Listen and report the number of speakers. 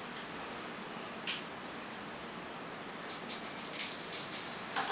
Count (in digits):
0